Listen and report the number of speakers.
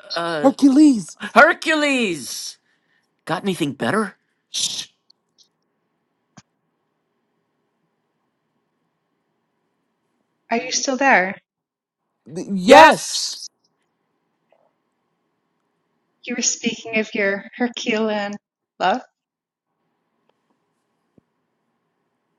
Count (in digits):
3